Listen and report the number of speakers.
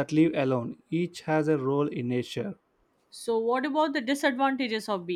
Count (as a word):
two